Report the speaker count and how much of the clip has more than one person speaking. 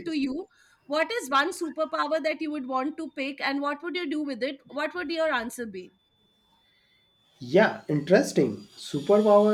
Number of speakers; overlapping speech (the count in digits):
2, about 1%